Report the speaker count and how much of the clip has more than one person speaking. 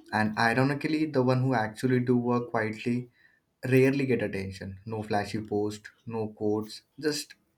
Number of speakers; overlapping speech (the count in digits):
1, no overlap